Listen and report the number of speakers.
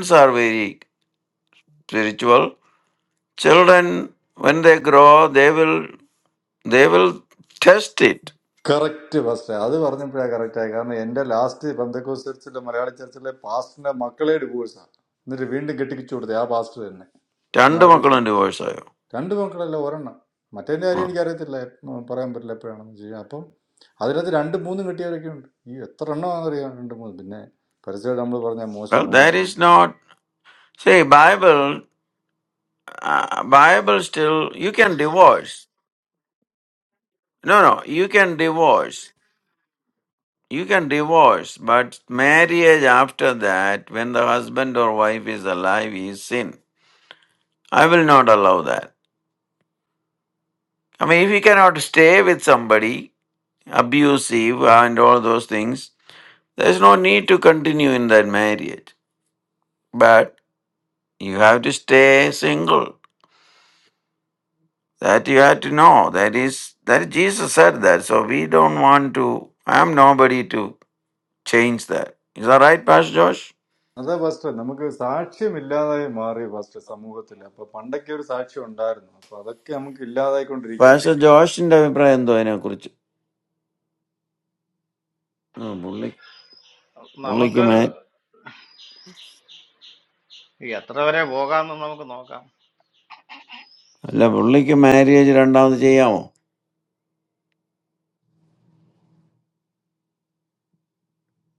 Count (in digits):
3